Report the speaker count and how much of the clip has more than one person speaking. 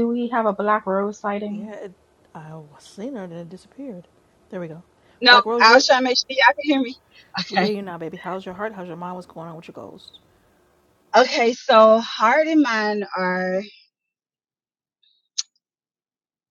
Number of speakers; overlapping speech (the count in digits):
3, about 4%